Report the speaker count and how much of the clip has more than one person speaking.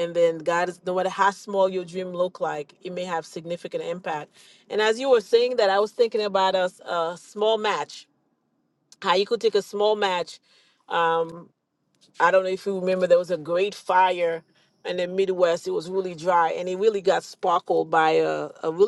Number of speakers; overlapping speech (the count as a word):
one, no overlap